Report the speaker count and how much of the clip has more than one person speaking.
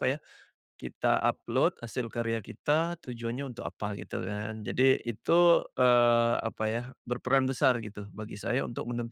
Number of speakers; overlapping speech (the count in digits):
1, no overlap